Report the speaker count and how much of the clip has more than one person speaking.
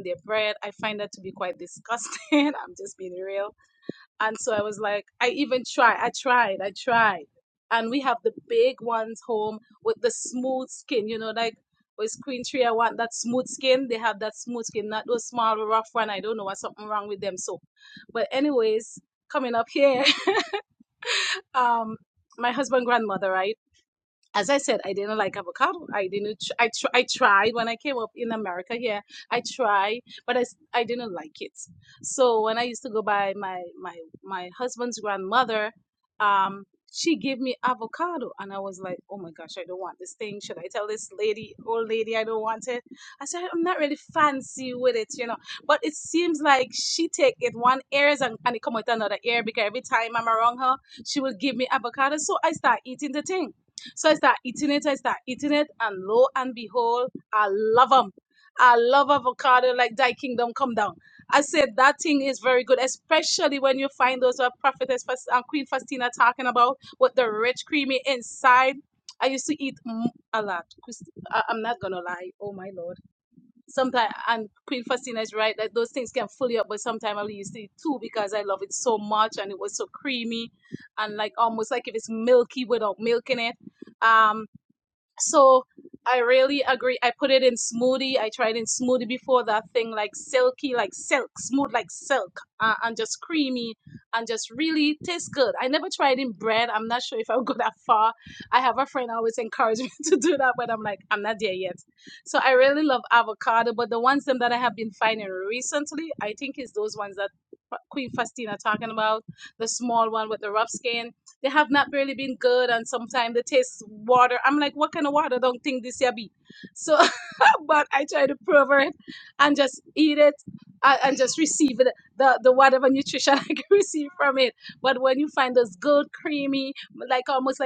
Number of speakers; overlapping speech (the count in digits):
1, no overlap